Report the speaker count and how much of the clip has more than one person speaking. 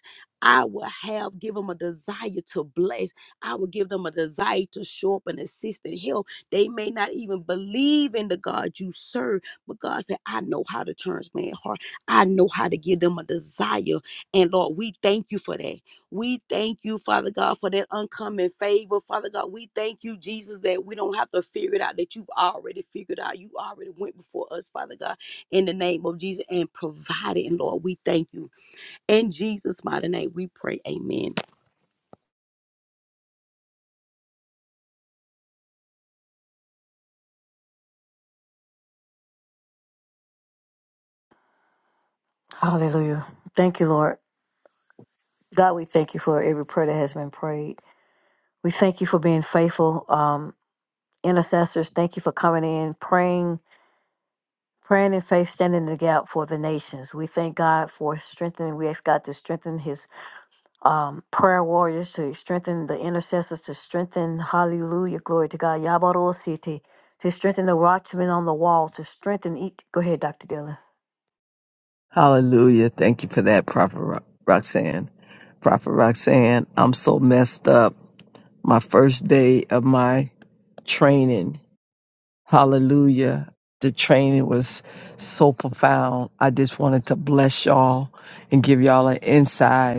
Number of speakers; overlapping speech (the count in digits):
3, no overlap